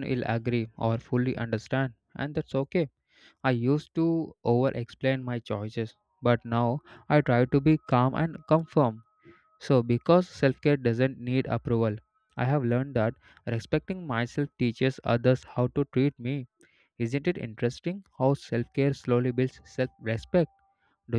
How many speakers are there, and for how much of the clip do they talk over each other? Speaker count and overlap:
one, no overlap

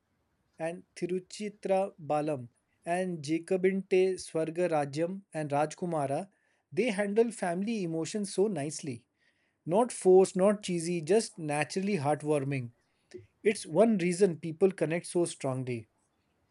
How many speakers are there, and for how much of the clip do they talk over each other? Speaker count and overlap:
one, no overlap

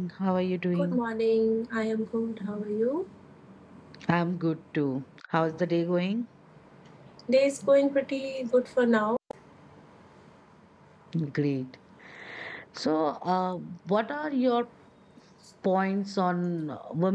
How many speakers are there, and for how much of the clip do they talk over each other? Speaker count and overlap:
two, about 1%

